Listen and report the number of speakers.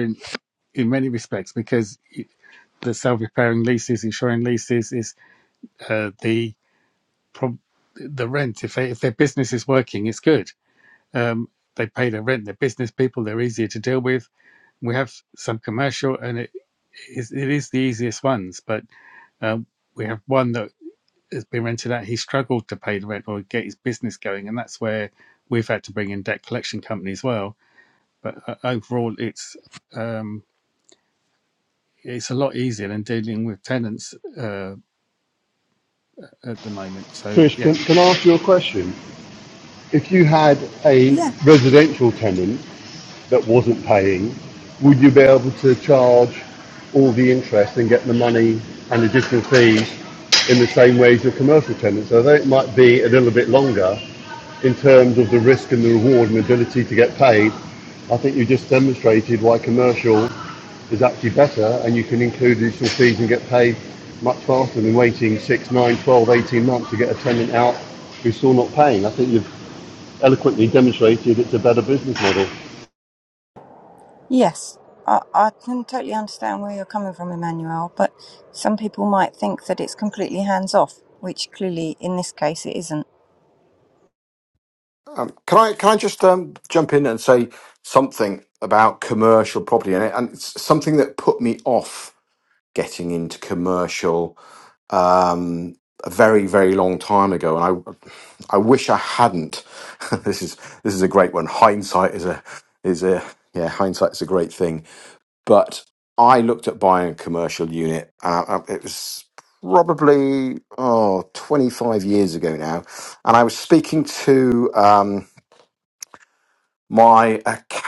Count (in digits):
4